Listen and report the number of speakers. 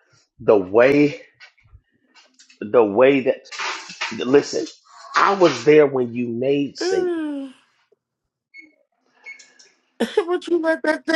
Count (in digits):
2